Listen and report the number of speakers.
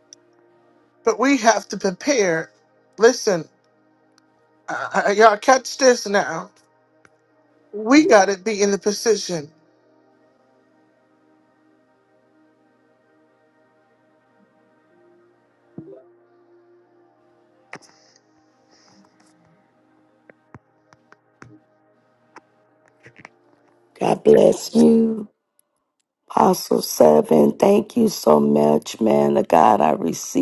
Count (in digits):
2